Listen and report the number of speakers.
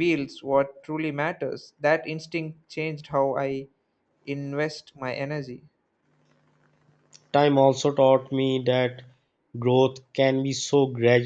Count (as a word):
two